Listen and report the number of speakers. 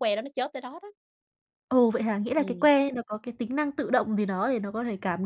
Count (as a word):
two